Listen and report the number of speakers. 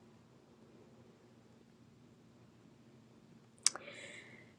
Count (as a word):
zero